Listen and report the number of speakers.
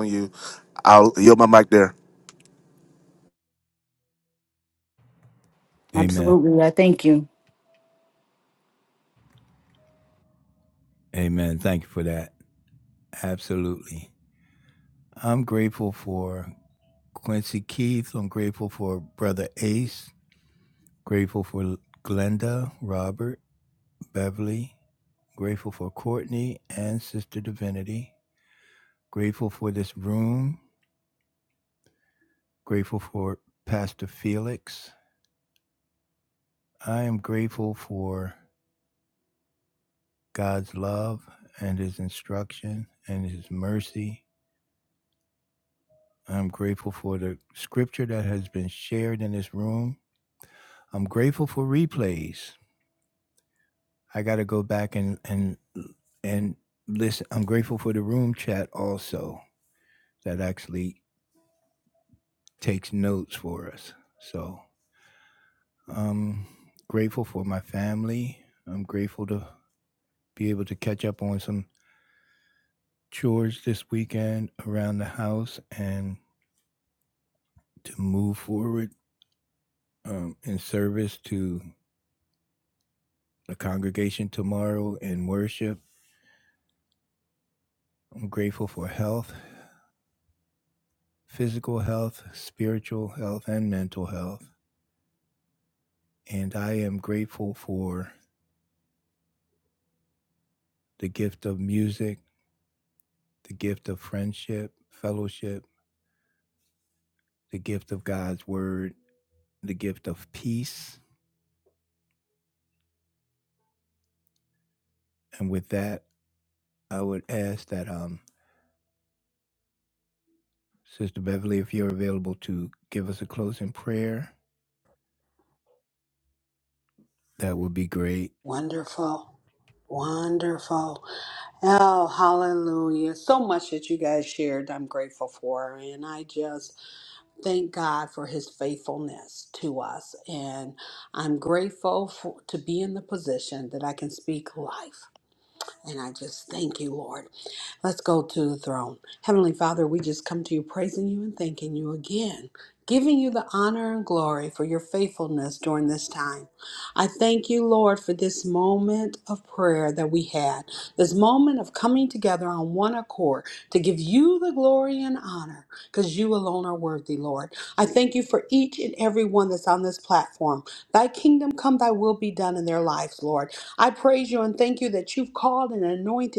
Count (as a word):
four